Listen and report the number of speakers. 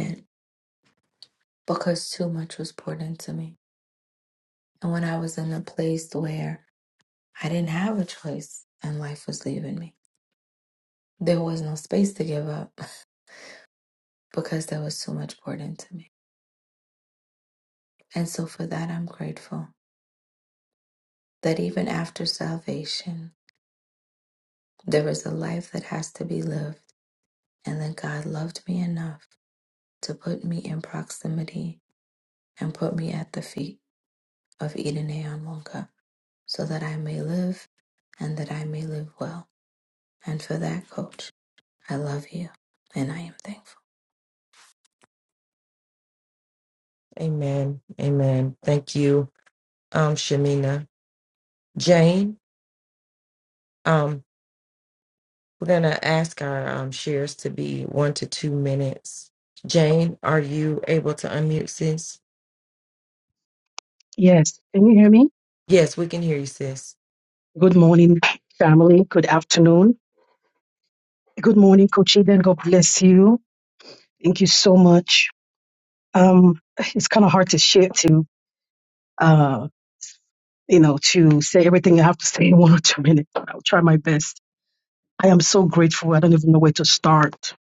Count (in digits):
3